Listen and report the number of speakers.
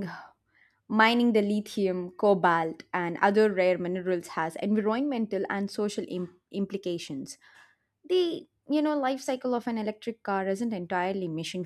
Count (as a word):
one